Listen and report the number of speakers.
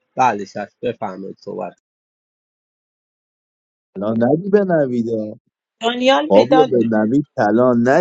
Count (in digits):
3